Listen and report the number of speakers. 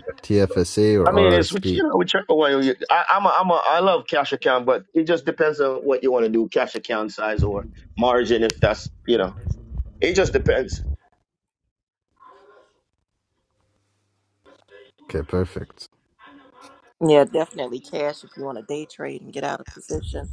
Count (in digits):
3